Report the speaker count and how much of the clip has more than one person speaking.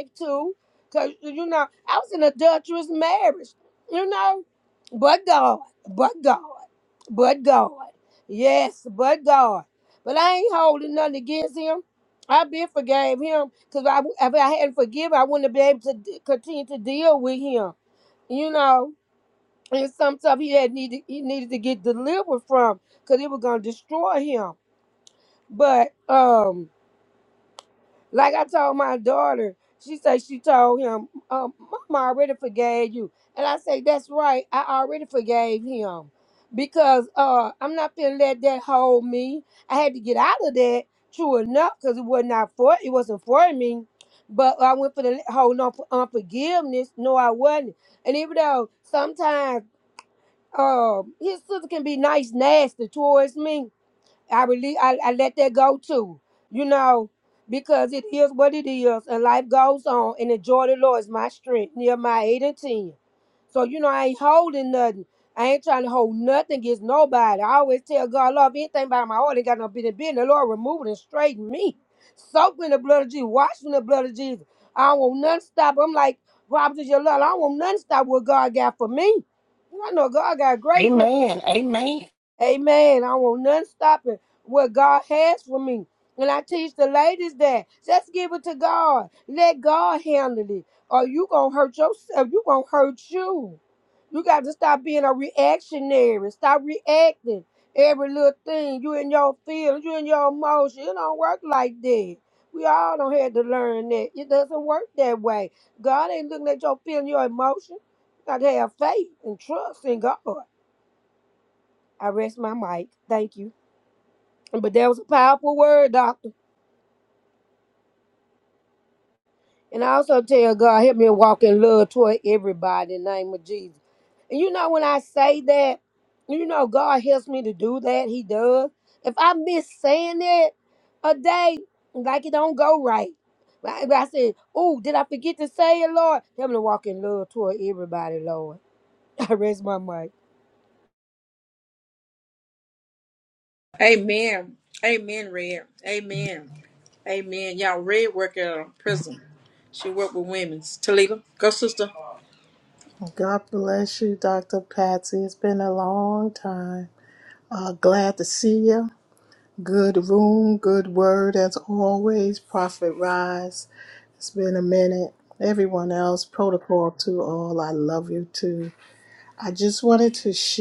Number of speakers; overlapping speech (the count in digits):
4, under 1%